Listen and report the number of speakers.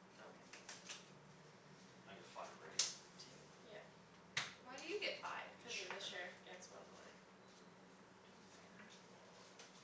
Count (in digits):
3